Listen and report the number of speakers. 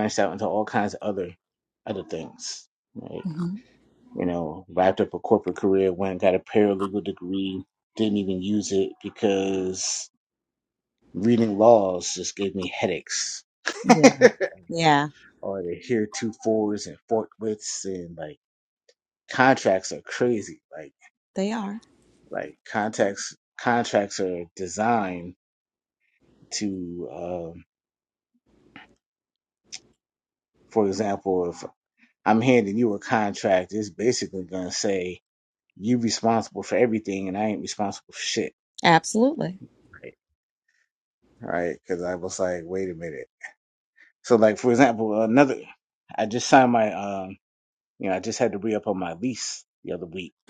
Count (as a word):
two